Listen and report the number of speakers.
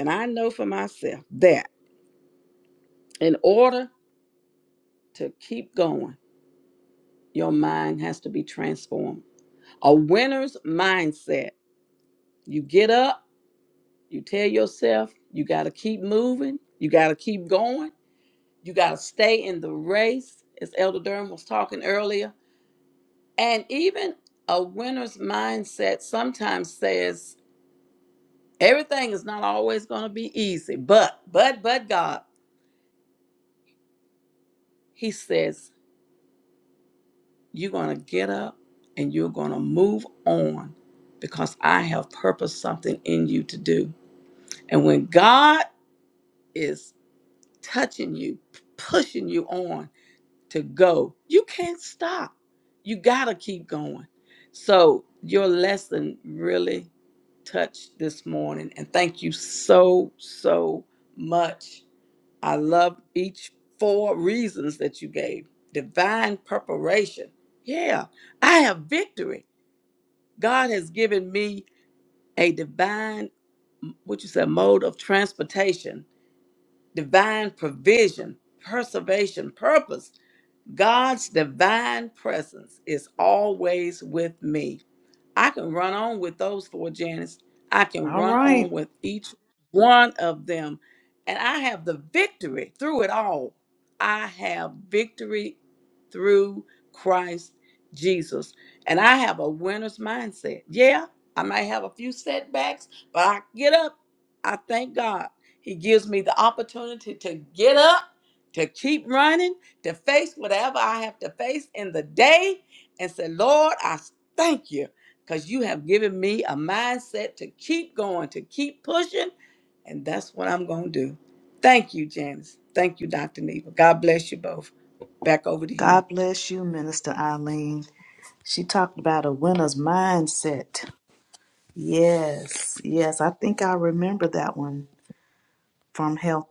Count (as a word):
two